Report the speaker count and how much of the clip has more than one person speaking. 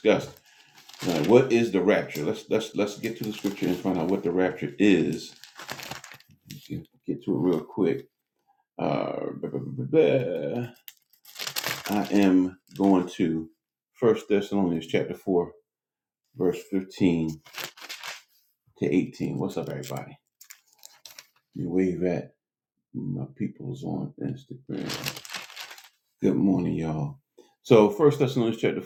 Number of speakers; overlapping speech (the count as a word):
one, no overlap